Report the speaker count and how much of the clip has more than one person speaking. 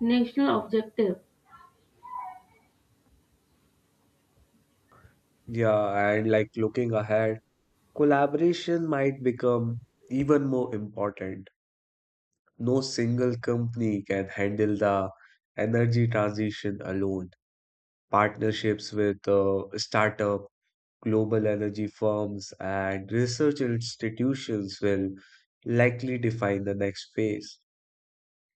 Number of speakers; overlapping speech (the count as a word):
two, no overlap